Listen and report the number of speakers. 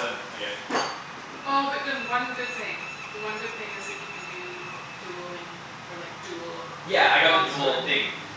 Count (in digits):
2